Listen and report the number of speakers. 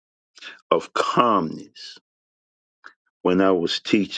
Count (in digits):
1